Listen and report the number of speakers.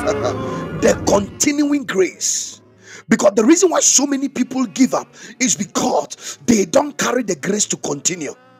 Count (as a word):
one